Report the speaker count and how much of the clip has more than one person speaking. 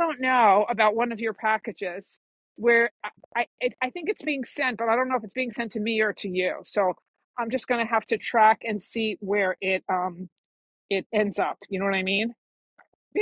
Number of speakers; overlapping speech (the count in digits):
1, no overlap